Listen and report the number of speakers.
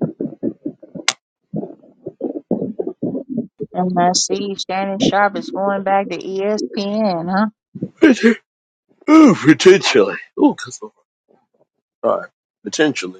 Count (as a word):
two